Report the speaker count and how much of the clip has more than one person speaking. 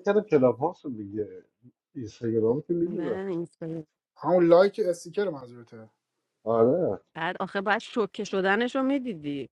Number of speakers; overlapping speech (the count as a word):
three, about 3%